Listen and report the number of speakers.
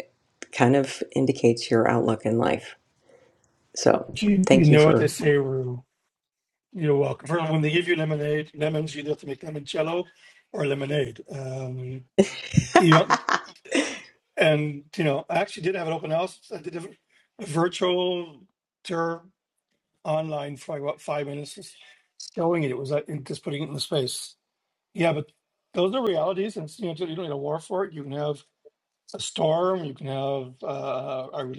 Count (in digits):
2